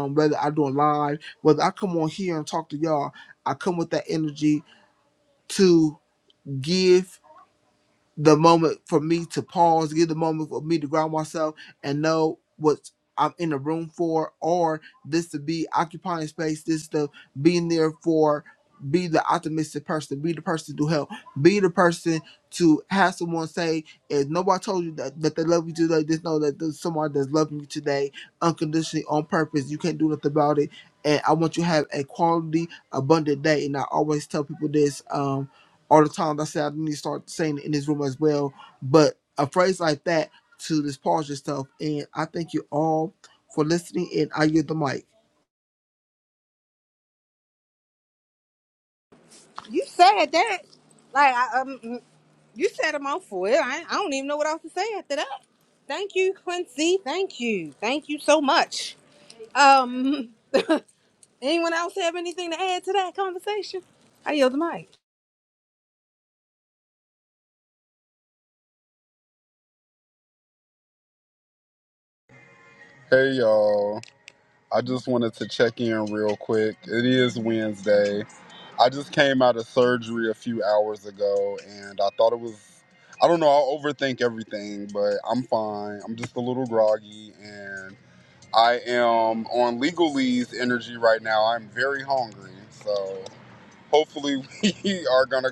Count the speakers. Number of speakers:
3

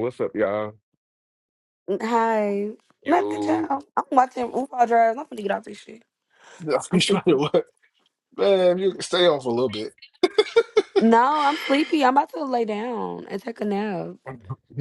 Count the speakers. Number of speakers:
3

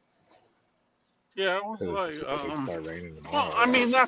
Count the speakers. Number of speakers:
2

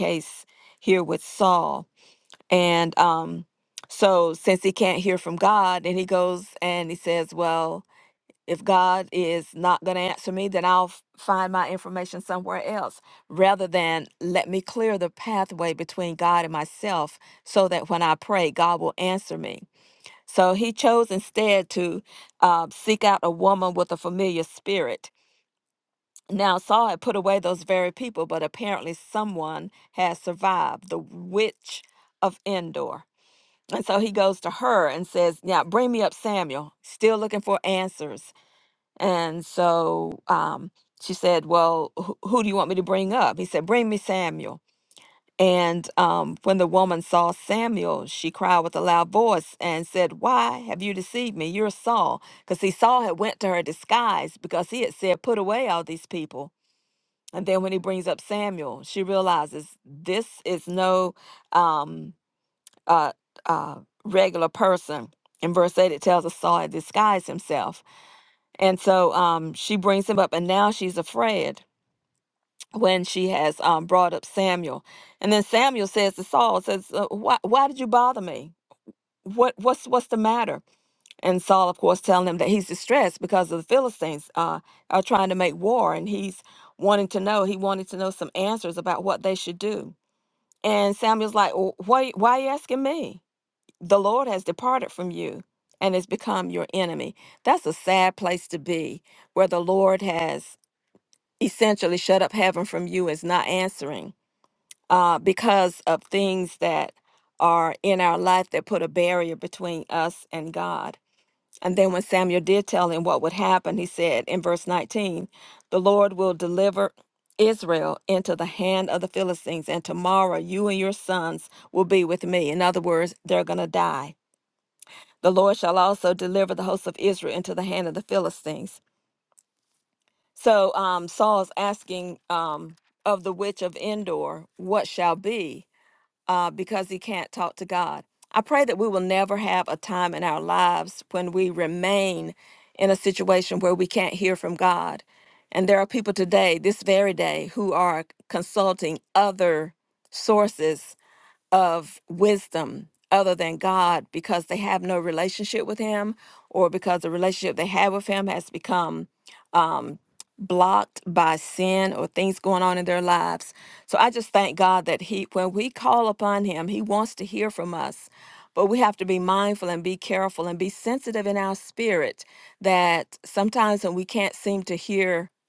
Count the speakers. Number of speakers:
1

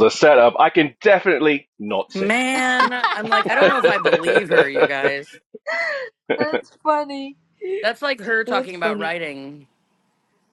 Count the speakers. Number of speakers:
3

